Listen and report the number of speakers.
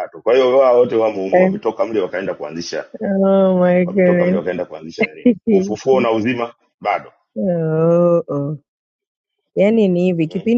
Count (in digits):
2